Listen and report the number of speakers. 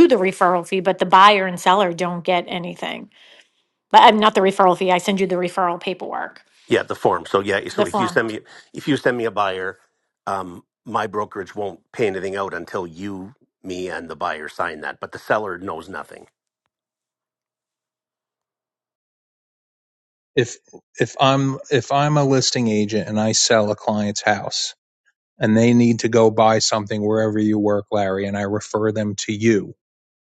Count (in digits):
3